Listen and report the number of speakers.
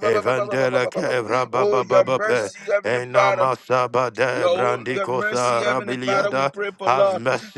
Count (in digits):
2